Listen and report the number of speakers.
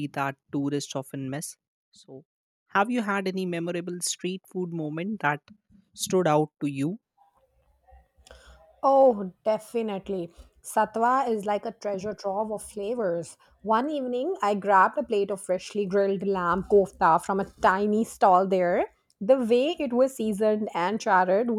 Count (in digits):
2